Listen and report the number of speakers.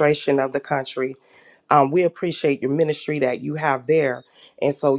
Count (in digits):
1